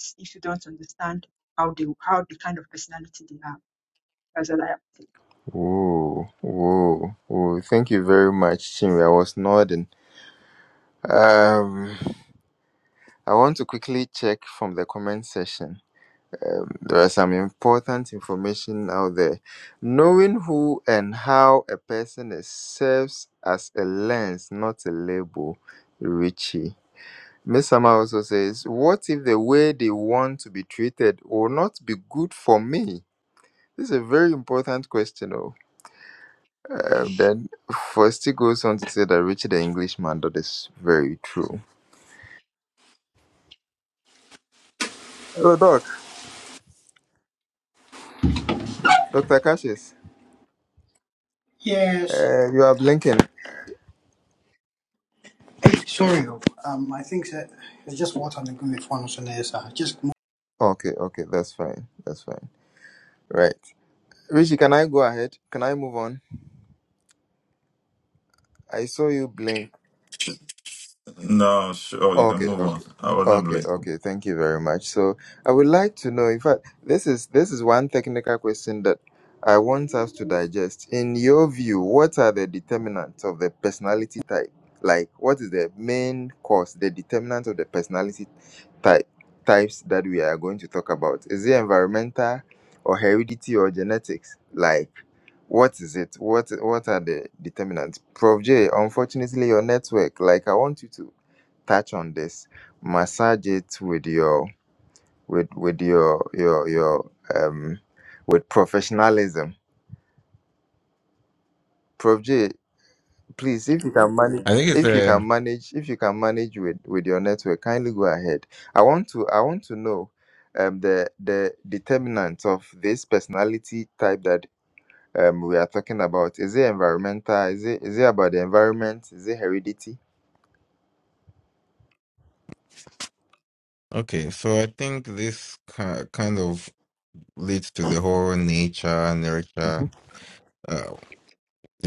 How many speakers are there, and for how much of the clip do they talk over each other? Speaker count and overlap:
5, about 1%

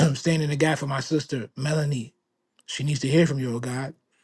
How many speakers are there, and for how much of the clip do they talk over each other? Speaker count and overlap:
1, no overlap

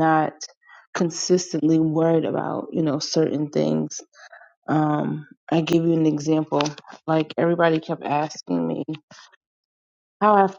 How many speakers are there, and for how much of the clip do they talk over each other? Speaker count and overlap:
1, no overlap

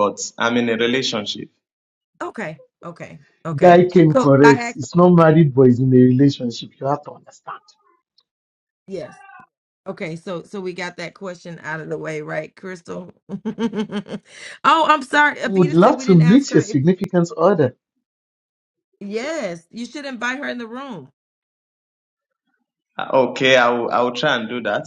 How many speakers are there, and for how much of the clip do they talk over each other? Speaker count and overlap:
3, about 9%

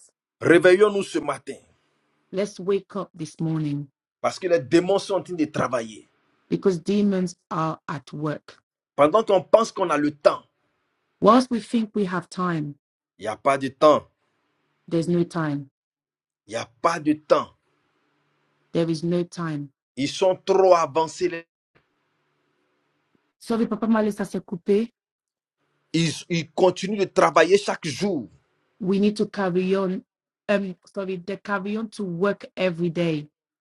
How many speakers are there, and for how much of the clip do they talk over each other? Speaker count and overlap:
2, no overlap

